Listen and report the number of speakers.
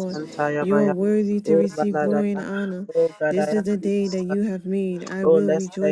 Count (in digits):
2